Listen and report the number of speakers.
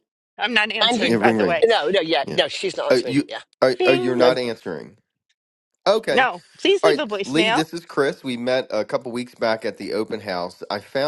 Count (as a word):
three